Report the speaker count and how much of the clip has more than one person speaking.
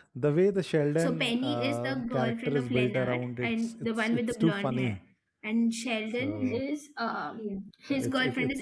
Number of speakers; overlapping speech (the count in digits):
2, about 60%